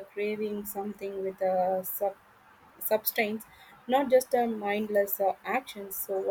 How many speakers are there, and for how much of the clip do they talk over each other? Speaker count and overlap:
1, no overlap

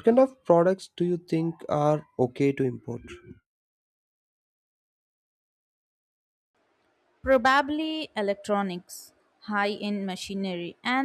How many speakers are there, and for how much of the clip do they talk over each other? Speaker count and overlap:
2, no overlap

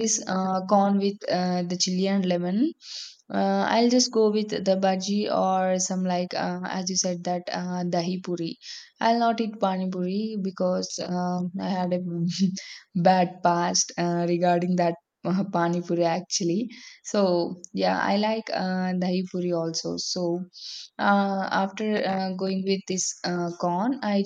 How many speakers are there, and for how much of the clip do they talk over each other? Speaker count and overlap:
1, no overlap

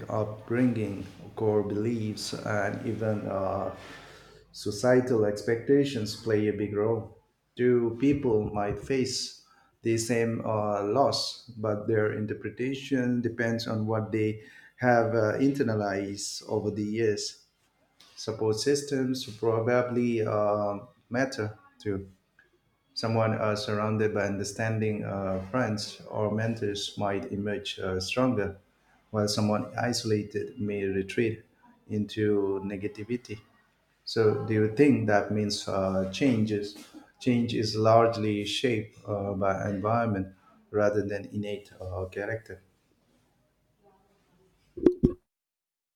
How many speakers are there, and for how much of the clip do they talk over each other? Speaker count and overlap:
1, no overlap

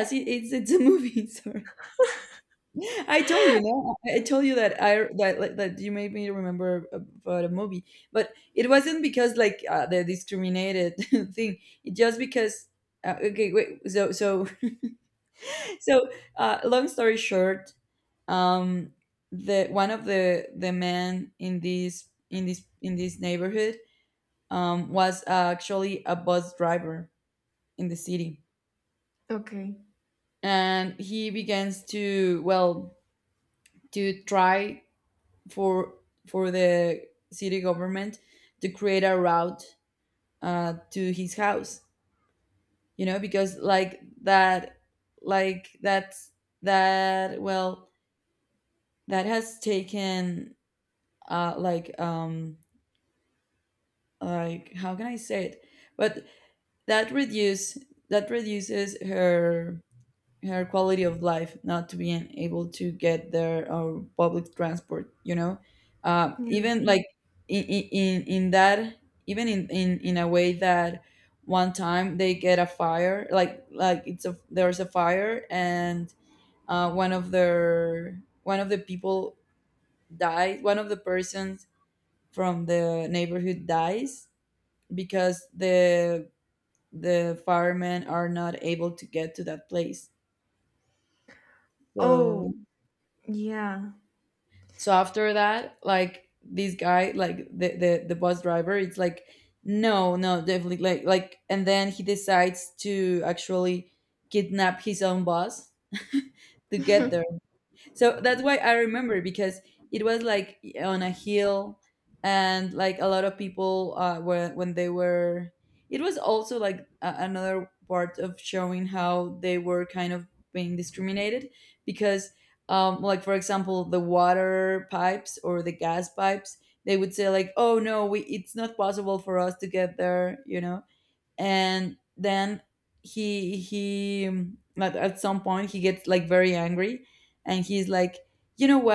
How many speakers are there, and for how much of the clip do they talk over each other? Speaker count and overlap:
2, about 1%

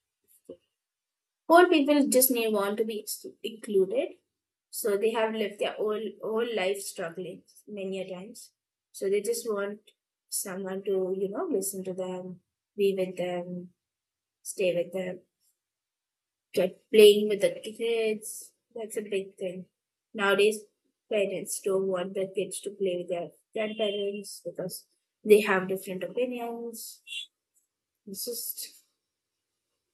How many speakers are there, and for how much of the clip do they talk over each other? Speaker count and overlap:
1, no overlap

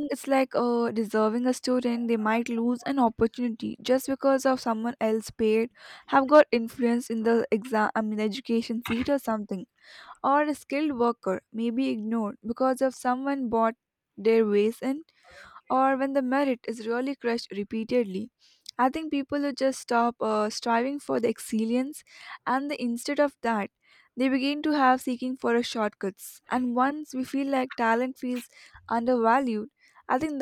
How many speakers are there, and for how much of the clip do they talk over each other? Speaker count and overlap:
1, no overlap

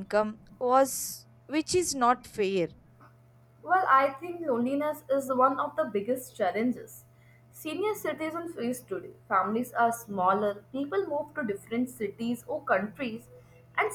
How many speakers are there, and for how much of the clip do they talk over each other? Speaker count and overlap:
2, no overlap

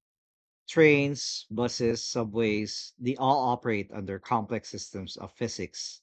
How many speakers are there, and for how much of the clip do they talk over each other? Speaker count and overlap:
1, no overlap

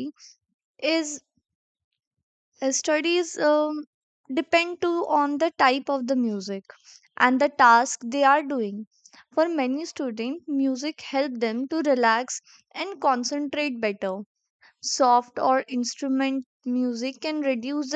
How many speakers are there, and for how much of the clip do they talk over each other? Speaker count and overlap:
1, no overlap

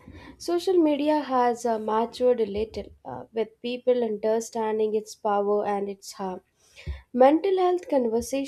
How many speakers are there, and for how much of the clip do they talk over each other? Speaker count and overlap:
1, no overlap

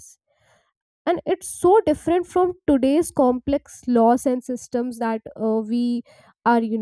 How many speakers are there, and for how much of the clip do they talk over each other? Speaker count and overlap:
1, no overlap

